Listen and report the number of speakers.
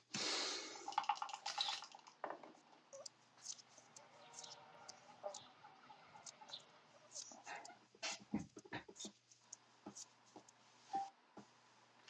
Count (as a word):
zero